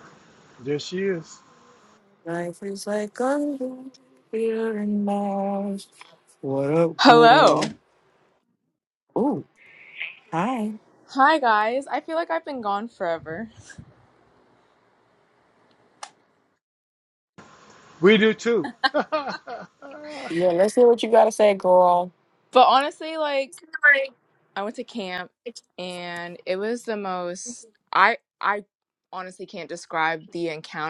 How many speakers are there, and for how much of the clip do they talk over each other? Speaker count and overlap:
3, about 2%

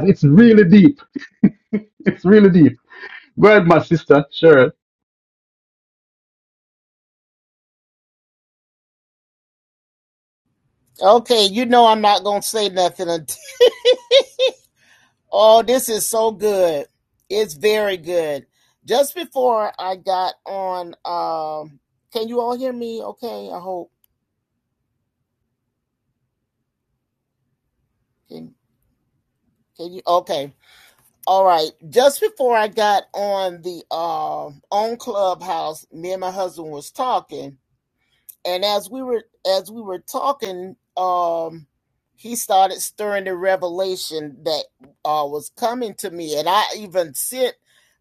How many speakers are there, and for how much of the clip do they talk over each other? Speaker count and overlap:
2, no overlap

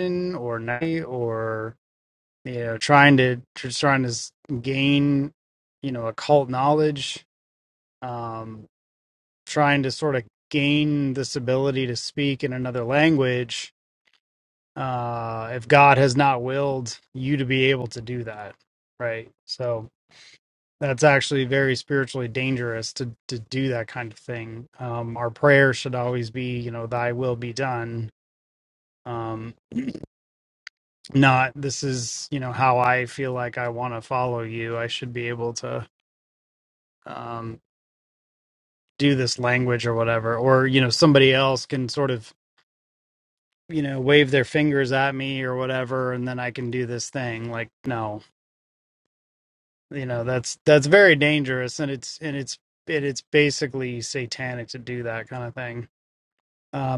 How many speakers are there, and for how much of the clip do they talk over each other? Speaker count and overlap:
1, no overlap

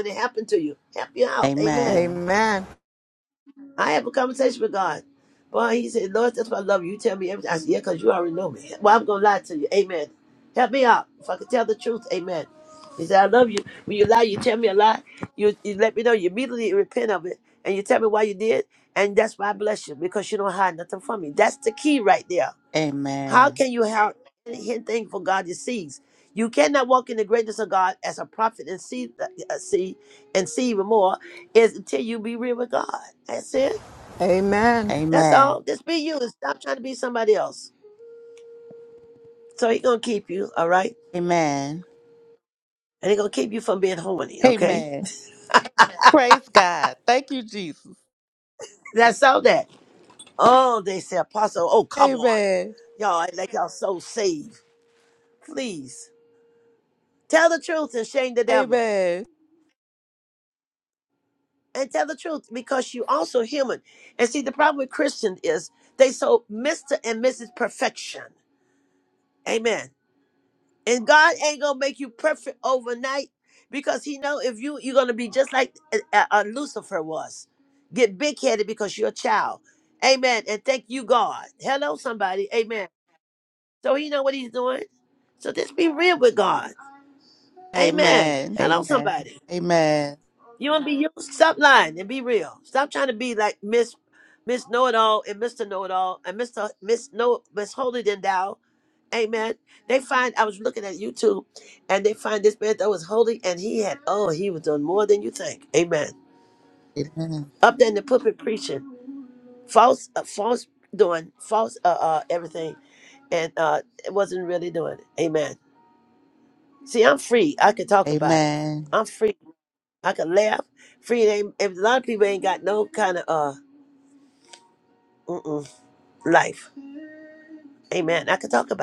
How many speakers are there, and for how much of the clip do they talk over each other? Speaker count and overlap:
3, about 4%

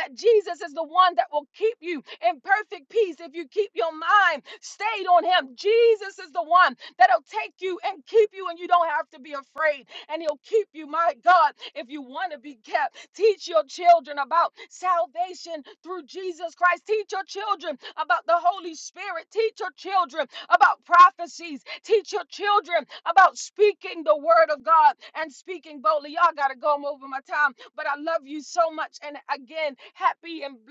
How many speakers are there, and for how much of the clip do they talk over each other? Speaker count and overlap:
1, no overlap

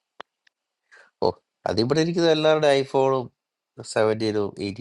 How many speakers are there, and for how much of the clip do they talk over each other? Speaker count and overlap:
1, no overlap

